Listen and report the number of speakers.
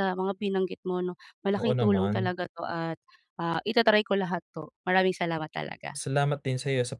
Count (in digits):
2